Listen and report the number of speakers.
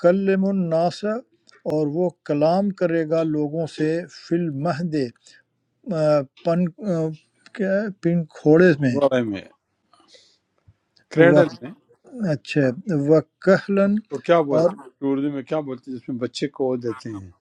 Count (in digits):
2